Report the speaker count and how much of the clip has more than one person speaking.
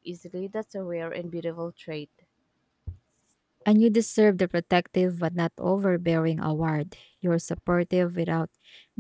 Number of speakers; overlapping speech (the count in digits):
2, no overlap